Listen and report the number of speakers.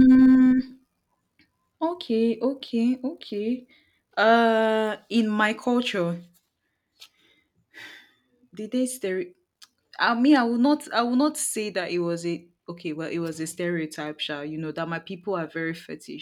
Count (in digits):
1